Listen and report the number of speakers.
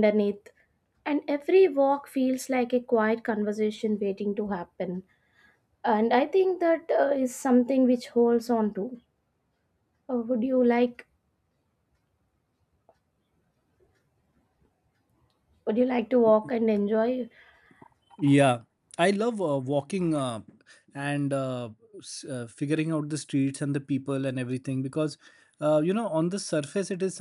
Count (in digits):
2